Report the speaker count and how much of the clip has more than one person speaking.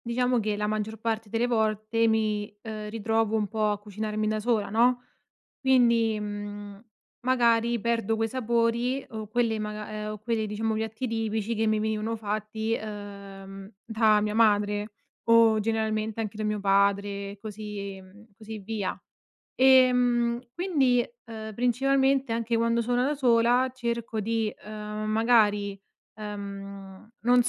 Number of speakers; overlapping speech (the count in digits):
1, no overlap